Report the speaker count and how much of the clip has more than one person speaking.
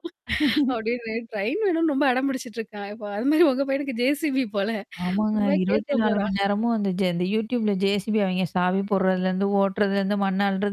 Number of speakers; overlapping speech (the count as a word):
two, about 9%